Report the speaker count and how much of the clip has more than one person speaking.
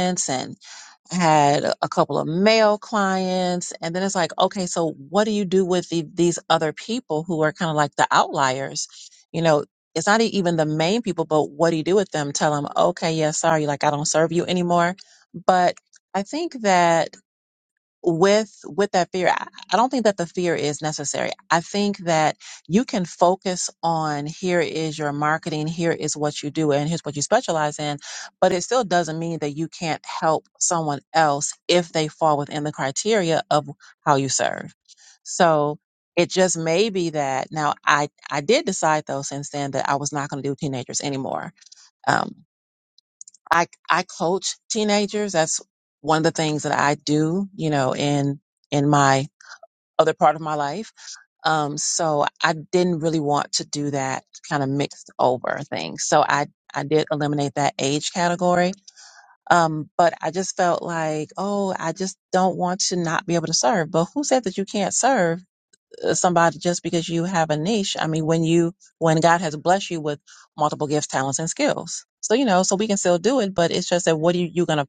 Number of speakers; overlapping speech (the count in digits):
1, no overlap